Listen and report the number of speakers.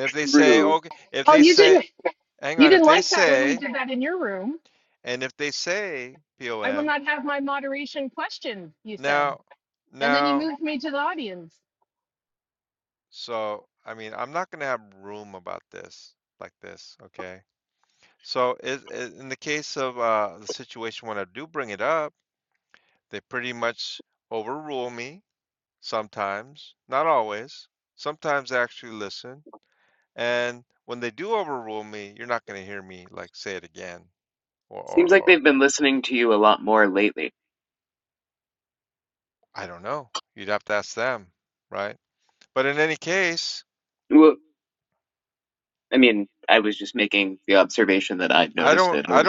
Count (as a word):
three